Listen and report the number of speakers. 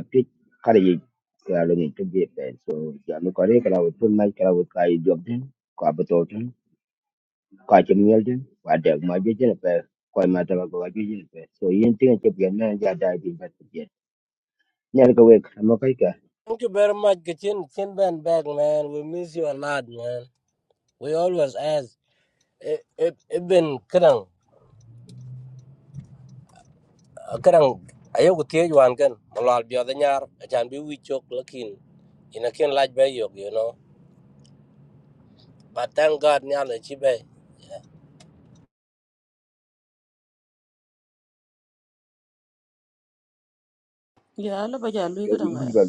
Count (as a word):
three